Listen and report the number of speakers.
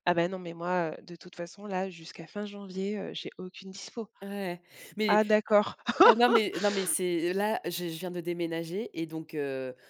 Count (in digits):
2